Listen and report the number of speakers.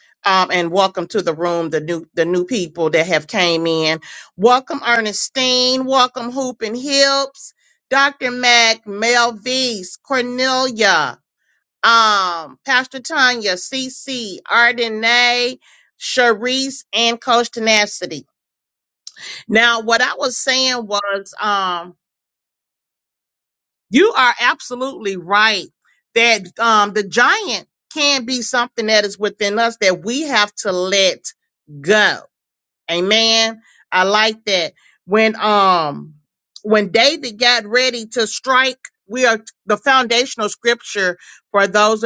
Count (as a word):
one